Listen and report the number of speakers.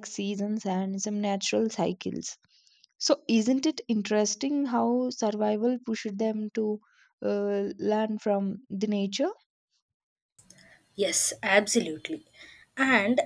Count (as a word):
two